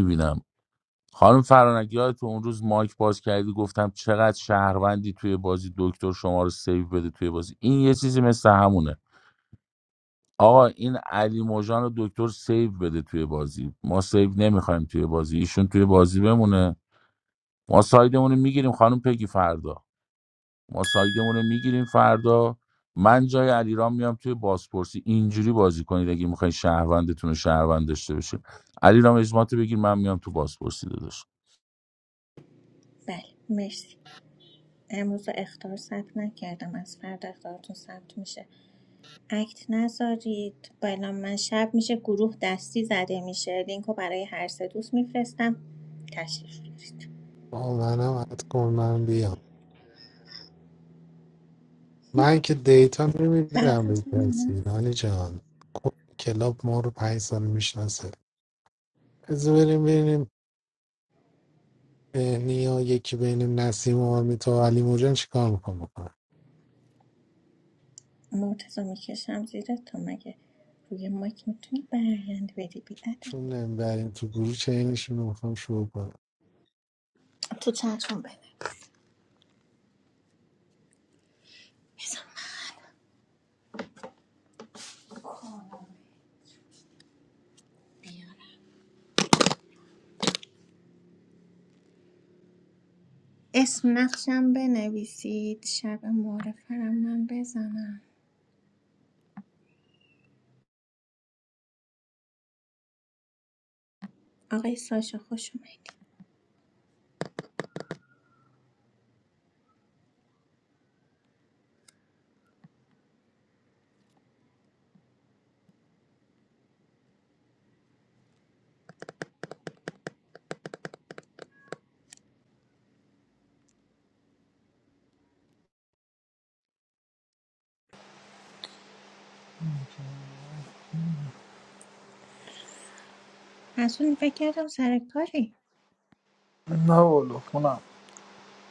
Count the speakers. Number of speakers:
4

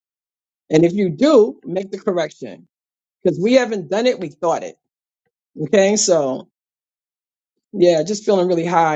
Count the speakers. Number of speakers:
1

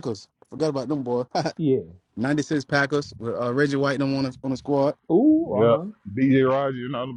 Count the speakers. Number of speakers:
3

